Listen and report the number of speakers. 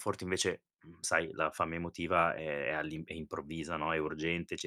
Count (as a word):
one